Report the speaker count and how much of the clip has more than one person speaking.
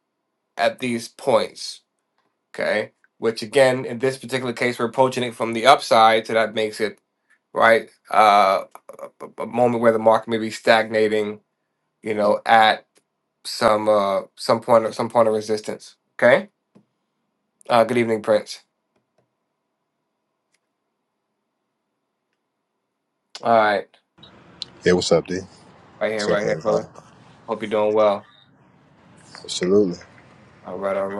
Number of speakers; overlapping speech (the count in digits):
2, about 2%